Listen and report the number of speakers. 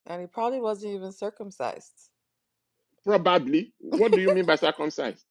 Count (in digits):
2